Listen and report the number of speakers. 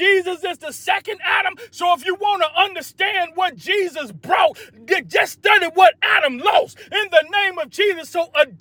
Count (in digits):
1